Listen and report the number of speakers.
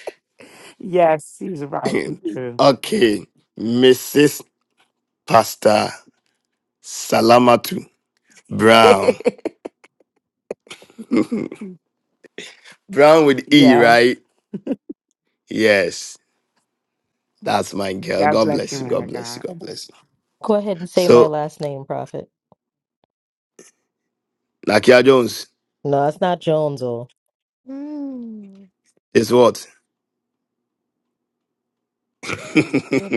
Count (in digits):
4